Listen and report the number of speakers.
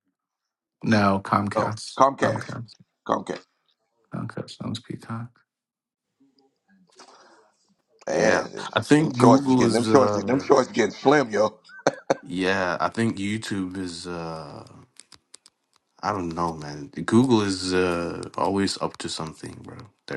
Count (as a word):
three